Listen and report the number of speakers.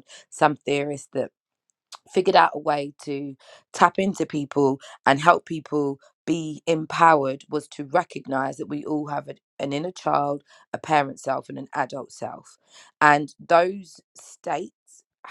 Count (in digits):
1